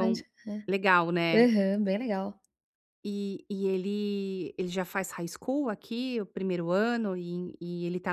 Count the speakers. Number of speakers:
two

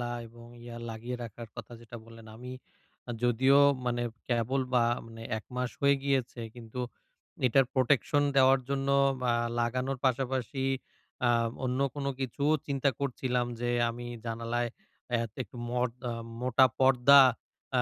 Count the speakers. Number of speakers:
one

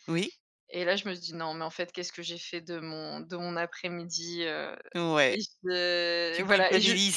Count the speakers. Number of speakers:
two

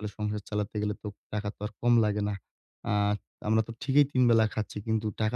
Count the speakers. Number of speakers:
one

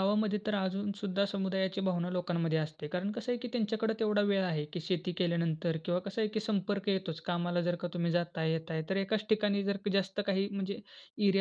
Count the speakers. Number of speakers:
one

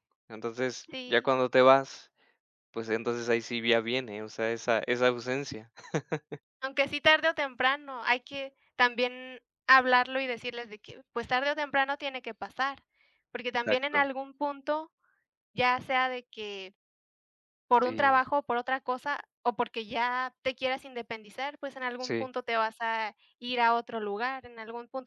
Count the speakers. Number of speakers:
two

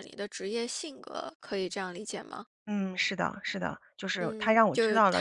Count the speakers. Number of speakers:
two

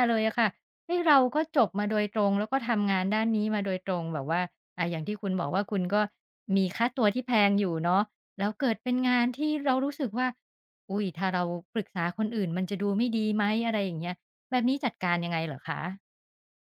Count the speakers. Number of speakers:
one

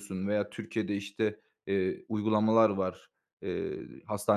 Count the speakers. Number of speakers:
one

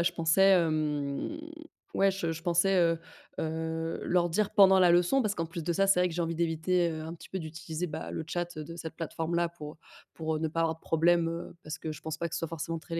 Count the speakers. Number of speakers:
one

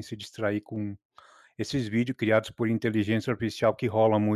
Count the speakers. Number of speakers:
one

